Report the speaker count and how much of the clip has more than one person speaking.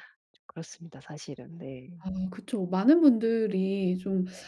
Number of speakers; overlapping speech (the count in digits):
2, no overlap